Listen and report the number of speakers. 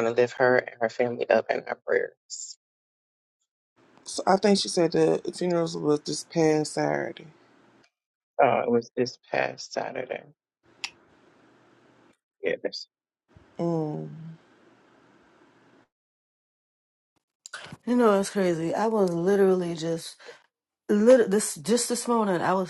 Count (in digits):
3